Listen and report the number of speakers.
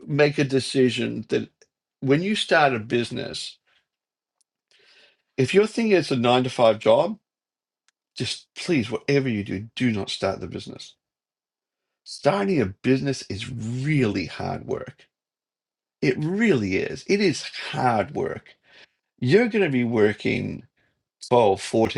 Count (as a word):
one